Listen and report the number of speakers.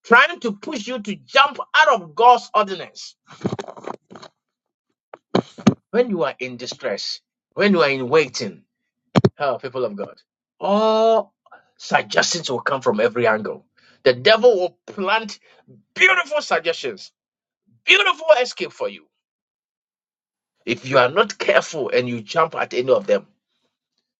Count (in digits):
1